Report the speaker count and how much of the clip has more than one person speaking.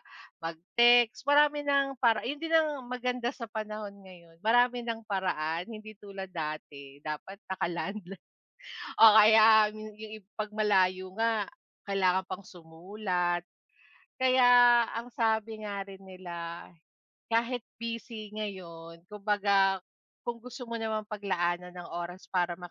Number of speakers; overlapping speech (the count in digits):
1, no overlap